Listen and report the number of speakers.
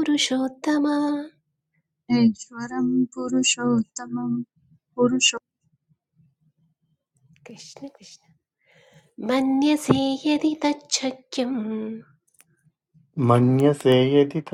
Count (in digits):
3